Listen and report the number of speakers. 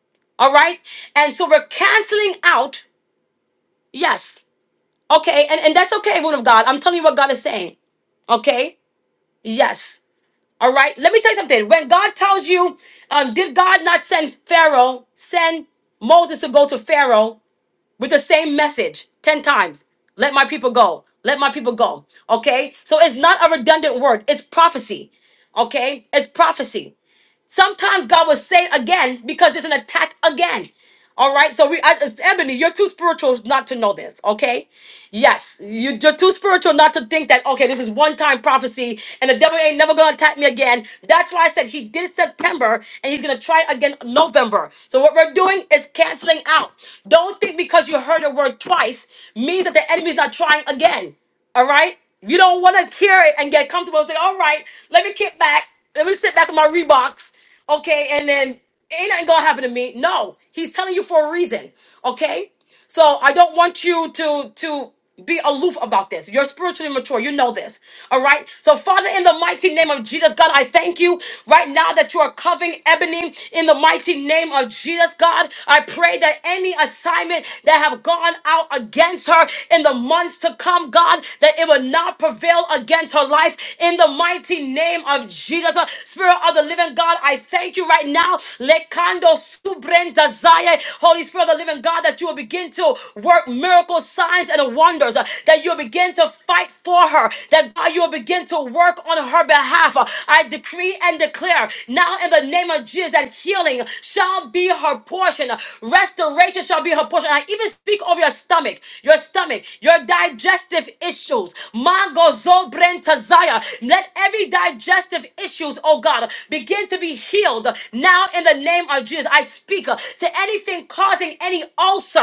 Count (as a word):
one